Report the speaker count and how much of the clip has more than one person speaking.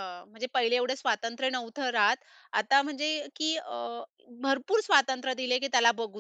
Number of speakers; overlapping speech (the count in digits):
1, no overlap